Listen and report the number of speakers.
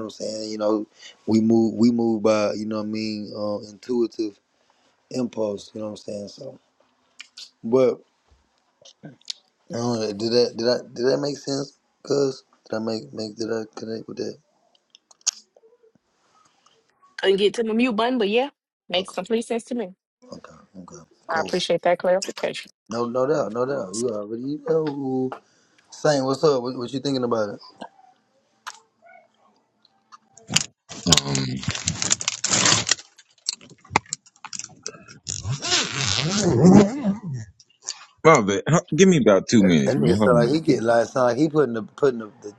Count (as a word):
three